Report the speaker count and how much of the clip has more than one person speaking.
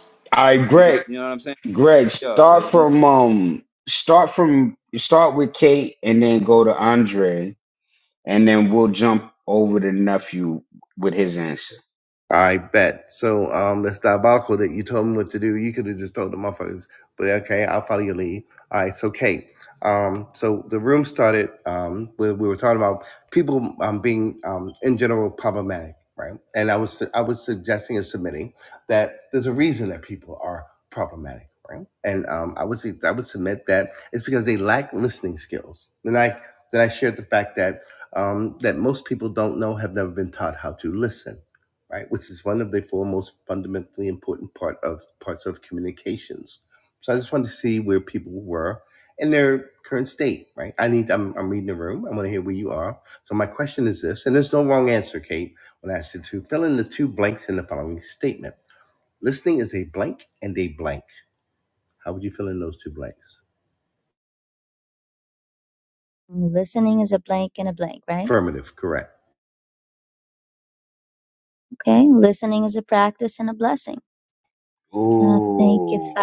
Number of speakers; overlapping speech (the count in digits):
4, about 3%